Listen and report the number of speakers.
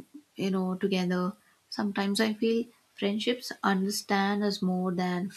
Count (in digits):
1